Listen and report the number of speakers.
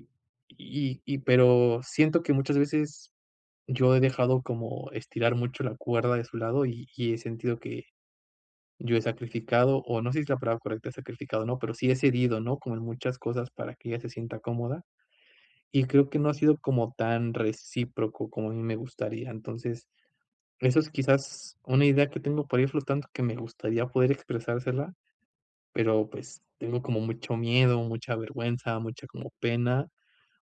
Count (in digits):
1